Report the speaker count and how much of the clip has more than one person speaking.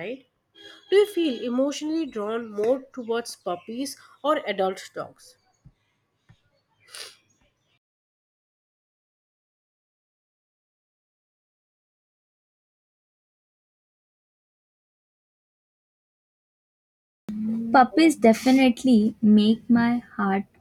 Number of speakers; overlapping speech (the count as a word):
two, no overlap